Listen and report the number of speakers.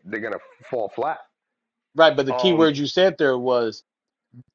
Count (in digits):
2